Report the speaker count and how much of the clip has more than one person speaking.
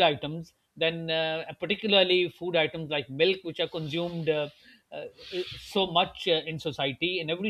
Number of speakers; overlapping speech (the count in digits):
1, no overlap